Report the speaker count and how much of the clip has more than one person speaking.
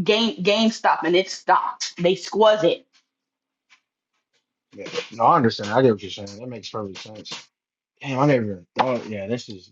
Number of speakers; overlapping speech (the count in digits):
2, no overlap